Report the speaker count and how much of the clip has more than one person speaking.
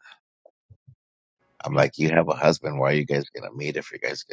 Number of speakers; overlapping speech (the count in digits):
1, no overlap